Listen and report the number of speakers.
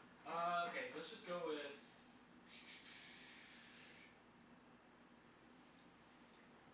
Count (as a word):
one